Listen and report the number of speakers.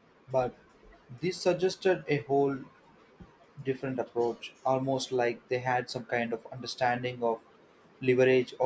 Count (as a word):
one